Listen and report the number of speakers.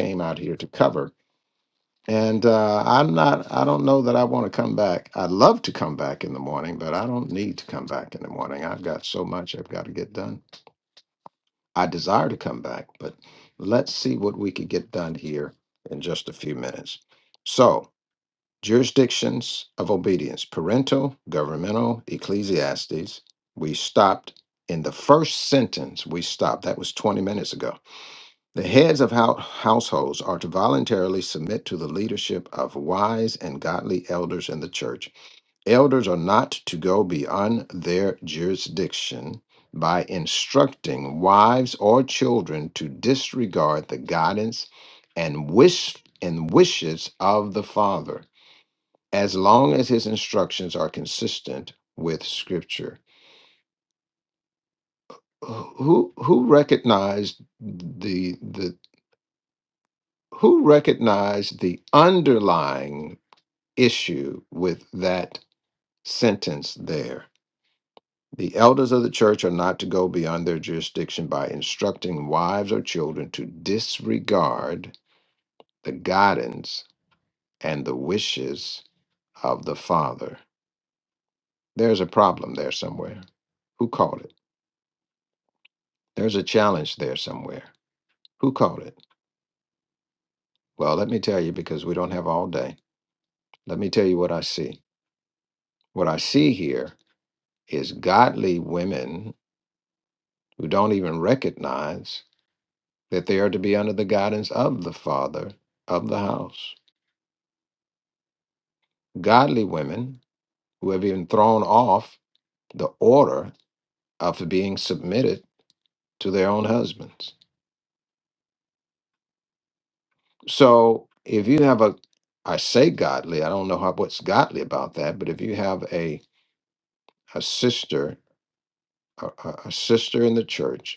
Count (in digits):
1